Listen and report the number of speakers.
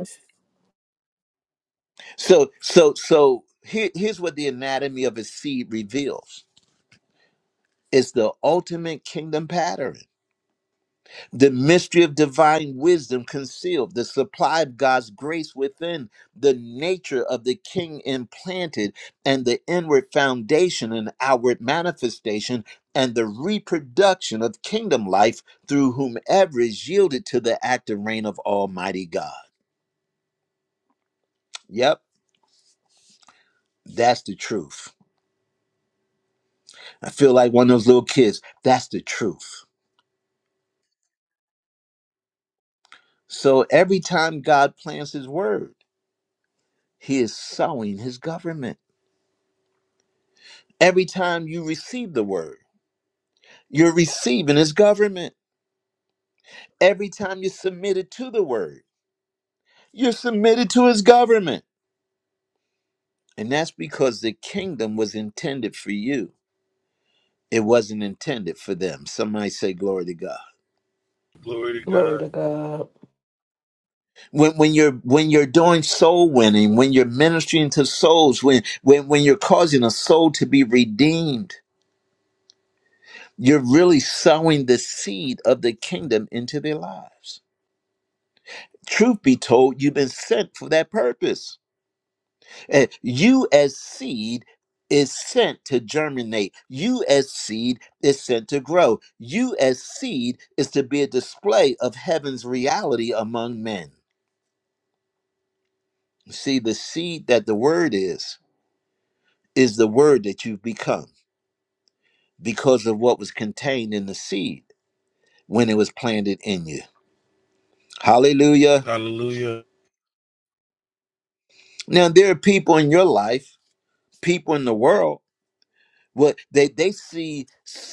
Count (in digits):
3